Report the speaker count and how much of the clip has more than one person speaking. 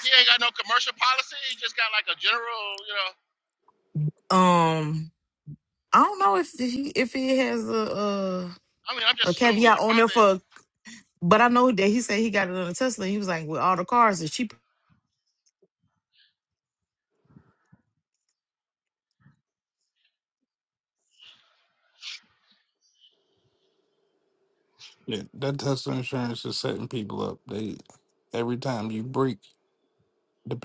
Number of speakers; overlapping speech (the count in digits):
3, about 3%